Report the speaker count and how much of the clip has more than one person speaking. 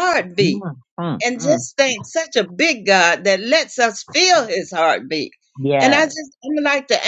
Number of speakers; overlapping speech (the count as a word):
two, about 13%